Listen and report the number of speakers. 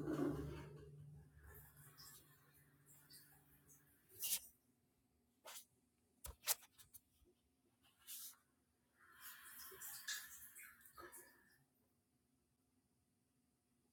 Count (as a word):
zero